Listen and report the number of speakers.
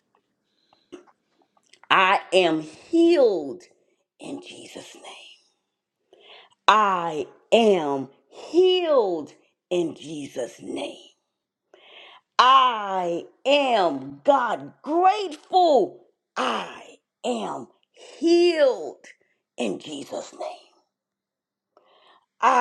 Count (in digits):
1